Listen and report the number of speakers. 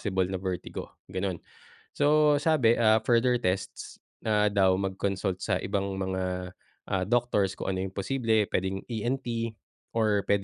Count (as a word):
one